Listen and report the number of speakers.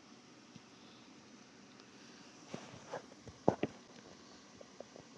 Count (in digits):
0